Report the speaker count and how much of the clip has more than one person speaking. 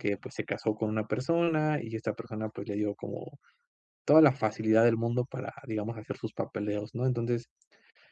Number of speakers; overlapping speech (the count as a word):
one, no overlap